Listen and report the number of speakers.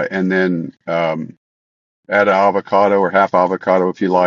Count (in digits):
1